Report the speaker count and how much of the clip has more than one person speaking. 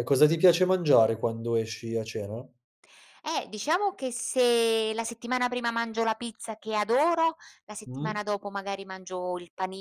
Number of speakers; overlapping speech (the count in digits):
2, about 3%